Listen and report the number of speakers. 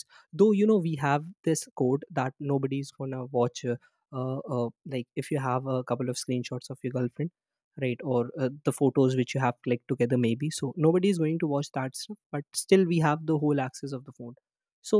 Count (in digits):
1